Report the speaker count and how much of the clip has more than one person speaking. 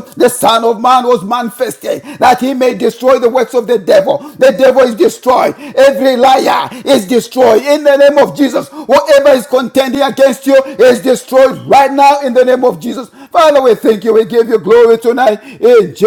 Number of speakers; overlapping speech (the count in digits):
1, no overlap